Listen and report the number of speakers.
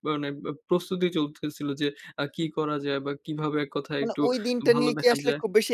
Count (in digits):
2